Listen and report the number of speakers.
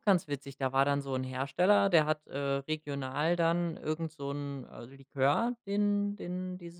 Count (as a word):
one